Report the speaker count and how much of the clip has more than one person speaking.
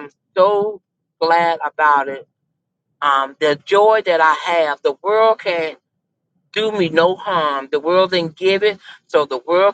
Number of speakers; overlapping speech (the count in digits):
1, no overlap